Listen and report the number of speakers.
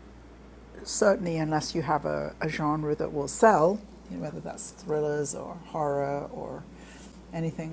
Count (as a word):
one